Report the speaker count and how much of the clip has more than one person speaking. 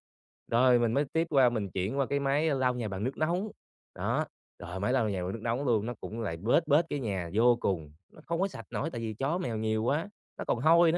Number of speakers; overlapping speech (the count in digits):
1, no overlap